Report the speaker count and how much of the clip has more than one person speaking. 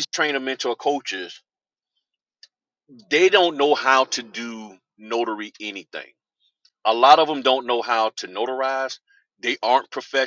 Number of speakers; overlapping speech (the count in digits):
1, no overlap